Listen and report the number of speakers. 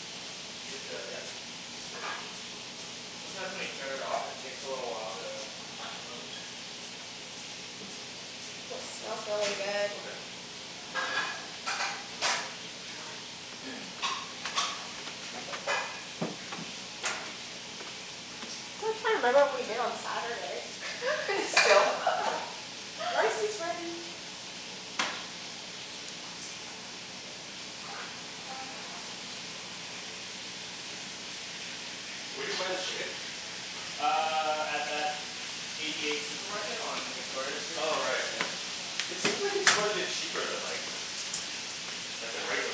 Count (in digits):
4